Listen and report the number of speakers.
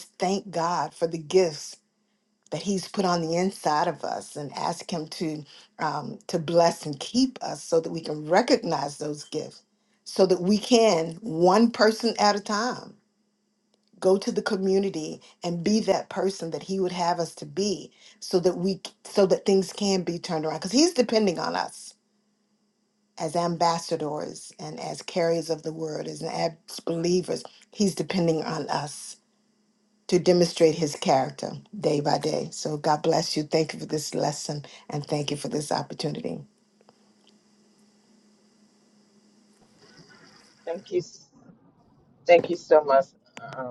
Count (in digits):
2